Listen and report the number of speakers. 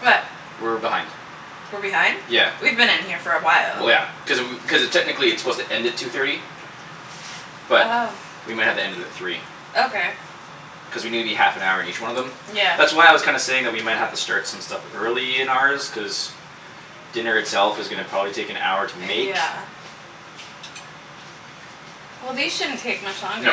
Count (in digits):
2